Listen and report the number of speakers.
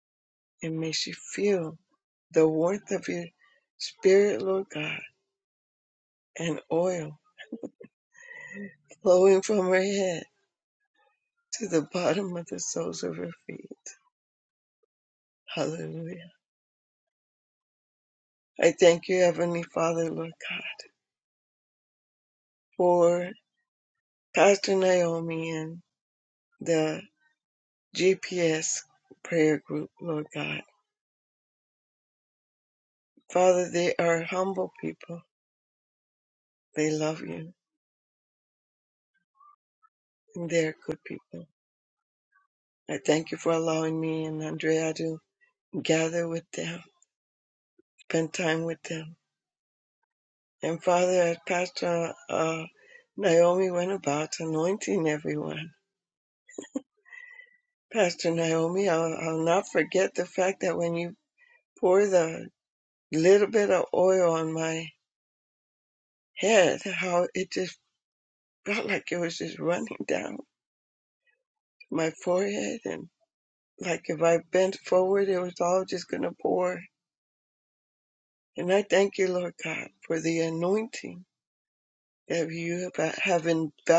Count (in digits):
1